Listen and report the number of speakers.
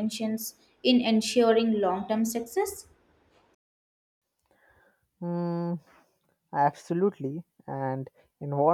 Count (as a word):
two